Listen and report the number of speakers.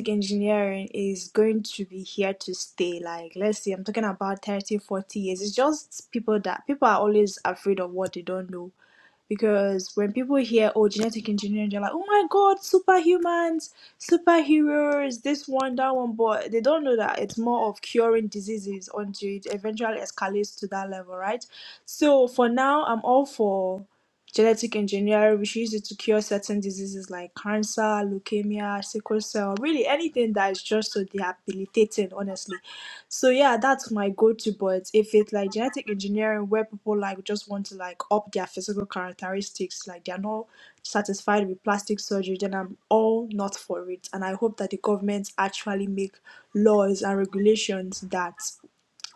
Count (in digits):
1